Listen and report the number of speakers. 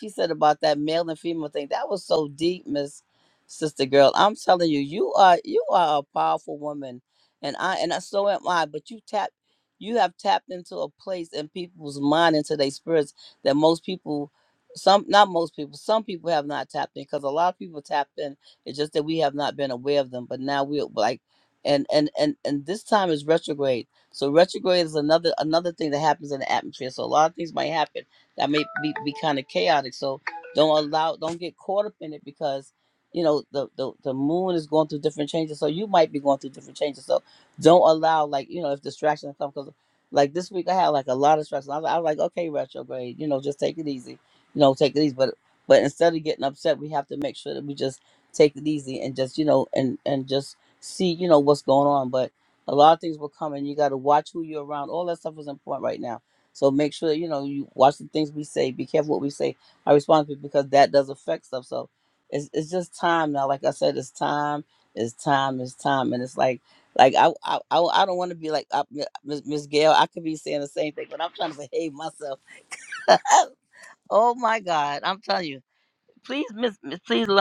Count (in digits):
1